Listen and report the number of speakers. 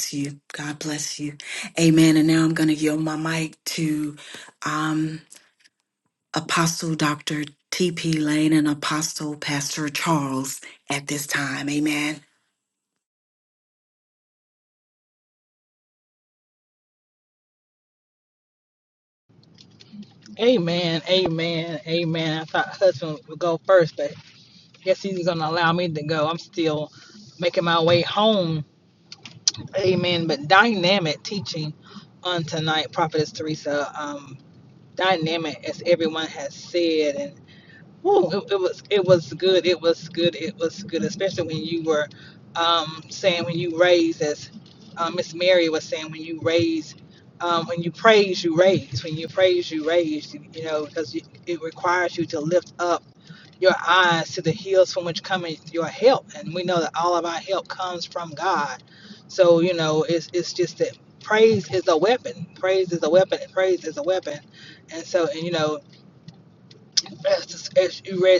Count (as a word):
two